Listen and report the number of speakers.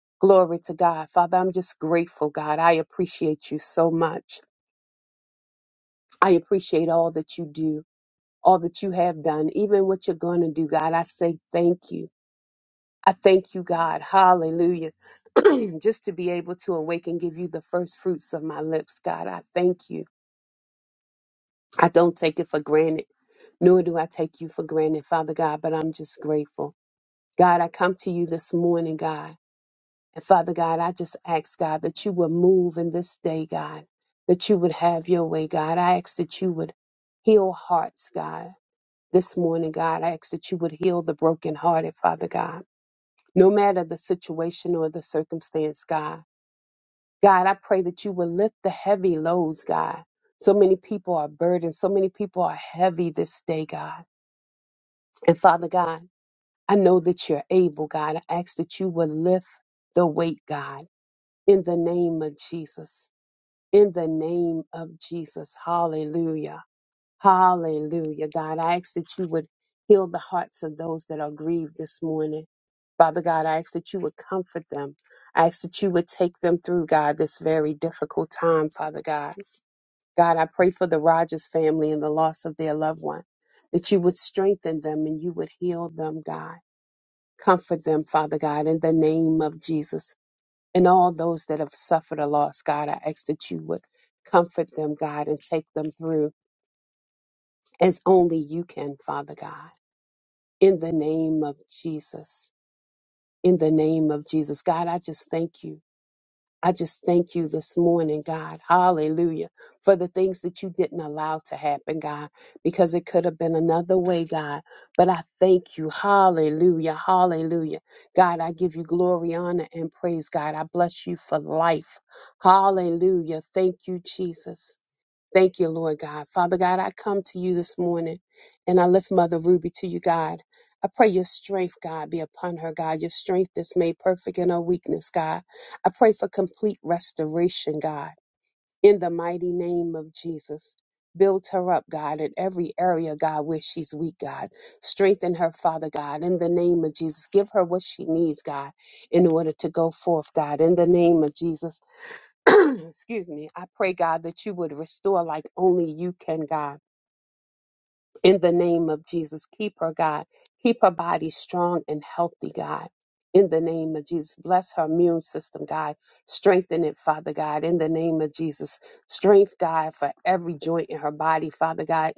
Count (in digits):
1